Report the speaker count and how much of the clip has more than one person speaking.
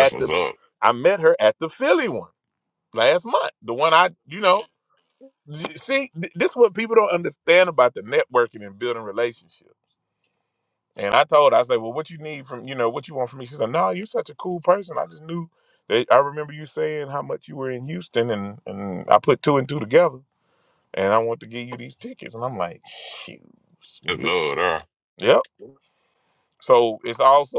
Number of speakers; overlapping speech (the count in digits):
2, about 1%